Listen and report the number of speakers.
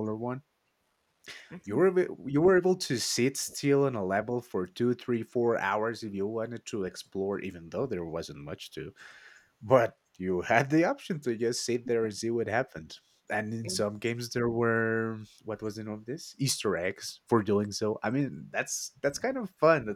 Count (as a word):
one